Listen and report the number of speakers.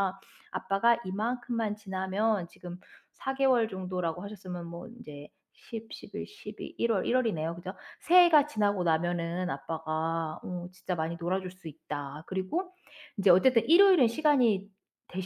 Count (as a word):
one